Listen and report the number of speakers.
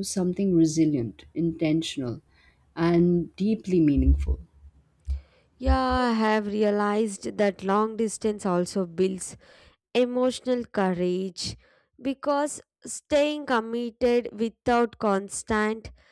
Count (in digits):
2